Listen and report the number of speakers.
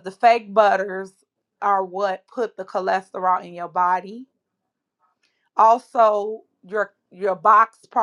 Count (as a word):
one